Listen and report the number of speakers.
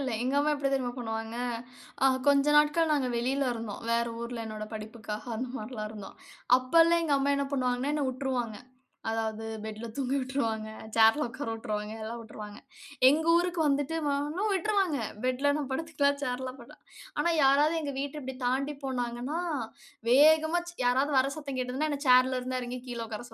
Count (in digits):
1